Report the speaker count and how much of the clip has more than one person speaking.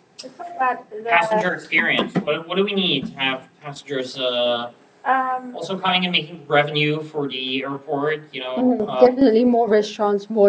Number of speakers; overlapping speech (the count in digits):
3, about 12%